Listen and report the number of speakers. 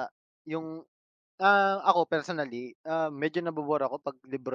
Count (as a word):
one